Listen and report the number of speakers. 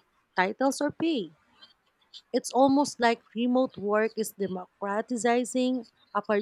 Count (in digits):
1